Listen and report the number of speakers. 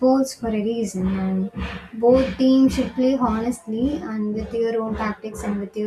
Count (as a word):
one